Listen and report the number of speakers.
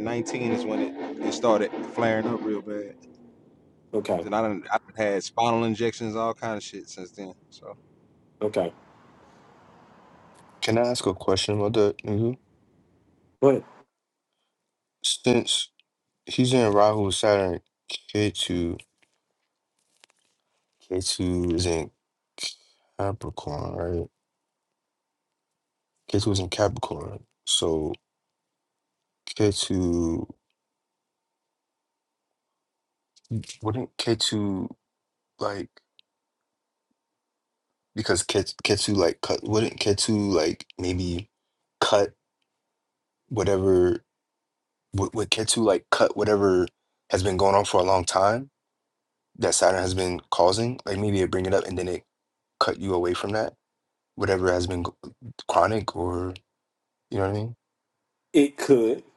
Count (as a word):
three